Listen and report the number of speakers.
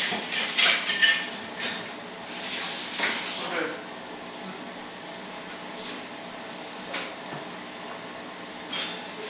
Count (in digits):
0